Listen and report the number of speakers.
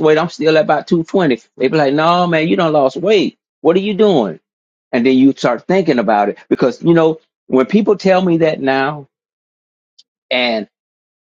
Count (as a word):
one